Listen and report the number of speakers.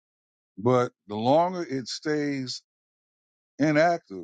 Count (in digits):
1